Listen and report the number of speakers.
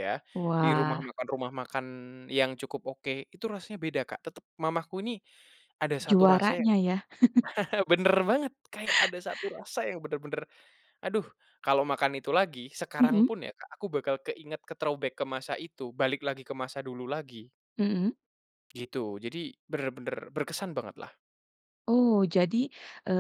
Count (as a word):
two